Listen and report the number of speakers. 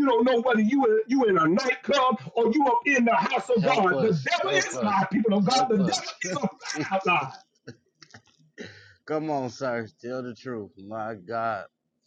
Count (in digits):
2